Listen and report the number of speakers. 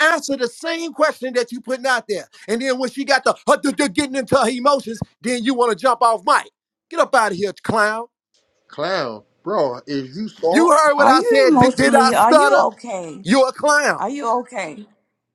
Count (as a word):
three